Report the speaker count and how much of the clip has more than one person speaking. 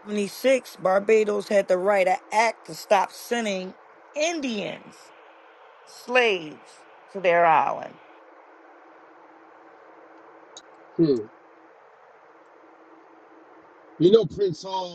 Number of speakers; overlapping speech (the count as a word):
two, no overlap